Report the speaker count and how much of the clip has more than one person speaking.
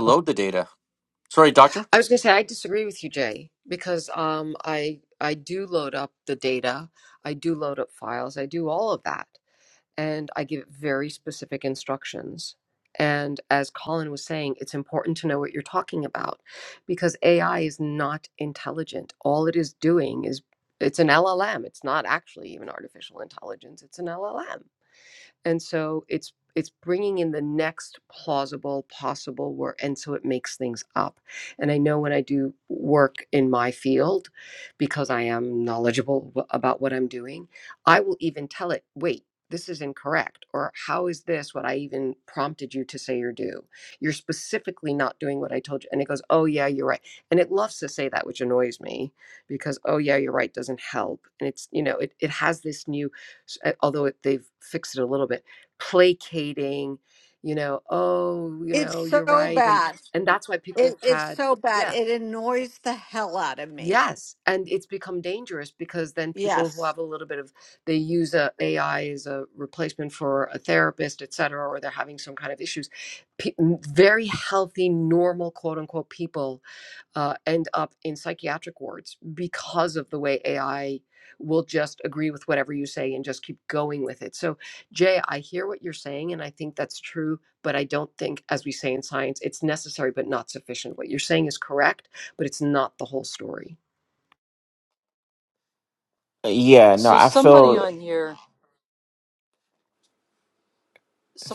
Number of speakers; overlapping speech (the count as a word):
five, about 3%